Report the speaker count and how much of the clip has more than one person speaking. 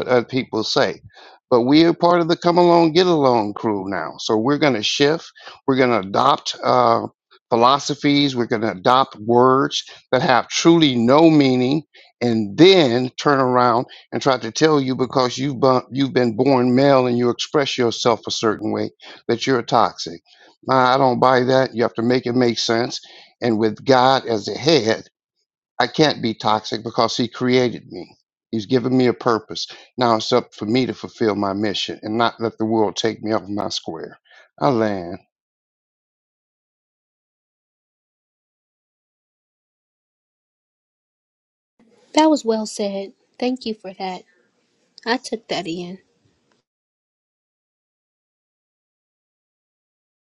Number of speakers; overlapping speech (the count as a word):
two, no overlap